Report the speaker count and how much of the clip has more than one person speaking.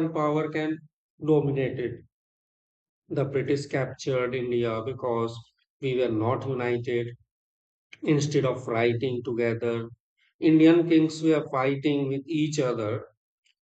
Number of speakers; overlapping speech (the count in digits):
1, no overlap